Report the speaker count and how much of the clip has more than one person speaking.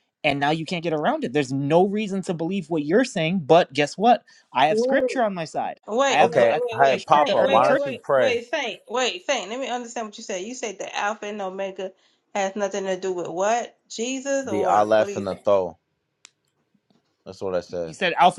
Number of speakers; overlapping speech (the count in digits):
3, about 20%